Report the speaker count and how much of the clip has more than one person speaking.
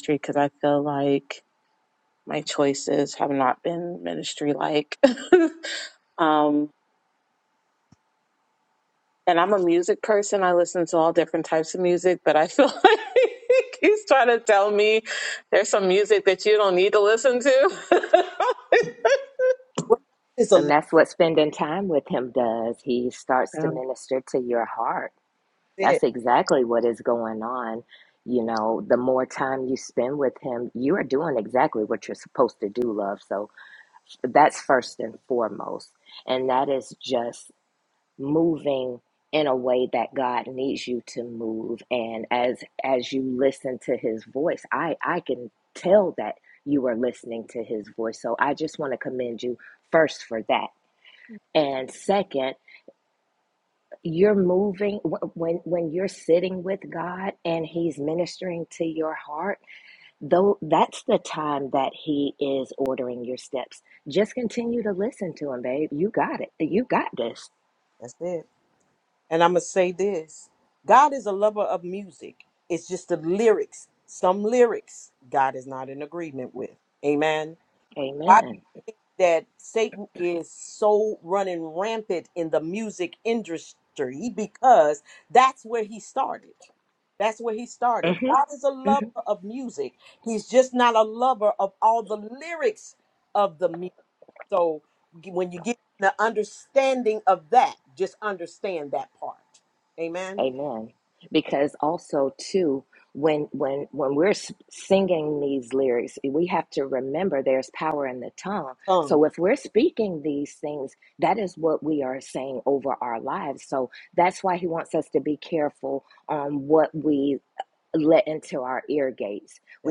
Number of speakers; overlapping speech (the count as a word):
three, about 1%